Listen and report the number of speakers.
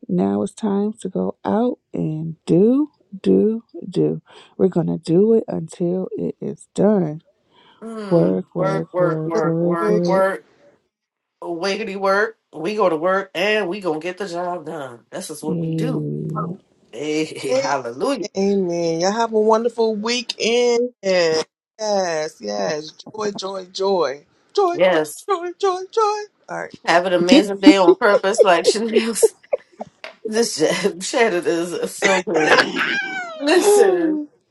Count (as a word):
three